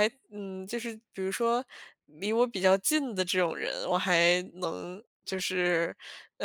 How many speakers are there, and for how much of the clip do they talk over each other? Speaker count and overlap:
1, no overlap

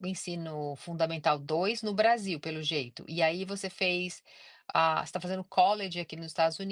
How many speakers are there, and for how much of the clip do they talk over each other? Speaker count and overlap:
1, no overlap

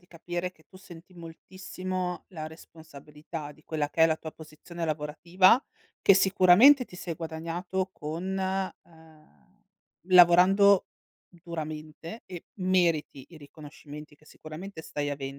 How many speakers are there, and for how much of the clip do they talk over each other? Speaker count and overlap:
1, no overlap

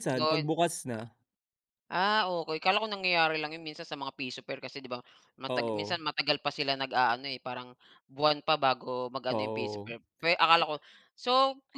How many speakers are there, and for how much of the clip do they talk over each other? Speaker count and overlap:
2, about 9%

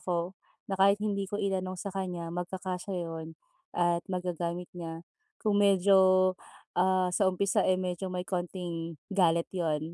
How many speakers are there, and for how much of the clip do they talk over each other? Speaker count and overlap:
1, no overlap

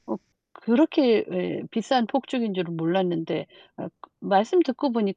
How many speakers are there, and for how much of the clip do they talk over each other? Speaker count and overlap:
1, no overlap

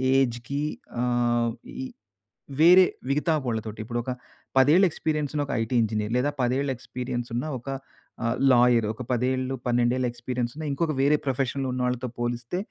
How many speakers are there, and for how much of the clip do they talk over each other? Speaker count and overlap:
1, no overlap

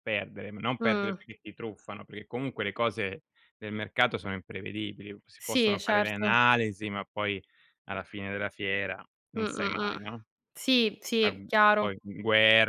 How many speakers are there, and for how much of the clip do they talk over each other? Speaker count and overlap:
2, about 16%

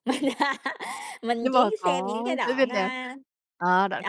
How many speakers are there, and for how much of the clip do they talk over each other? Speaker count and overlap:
2, about 39%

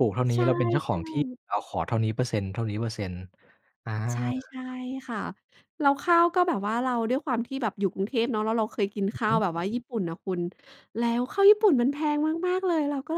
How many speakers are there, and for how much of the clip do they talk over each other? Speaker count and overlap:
2, about 3%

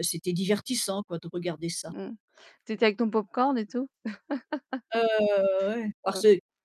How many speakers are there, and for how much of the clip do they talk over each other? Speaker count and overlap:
2, about 3%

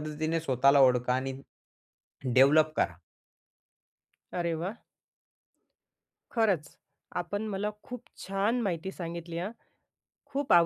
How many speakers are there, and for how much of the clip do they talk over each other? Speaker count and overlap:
2, no overlap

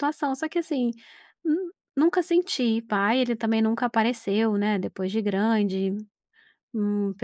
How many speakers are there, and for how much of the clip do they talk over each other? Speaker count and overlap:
1, no overlap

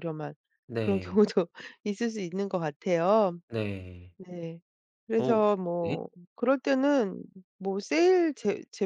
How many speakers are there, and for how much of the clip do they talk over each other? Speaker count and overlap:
2, about 8%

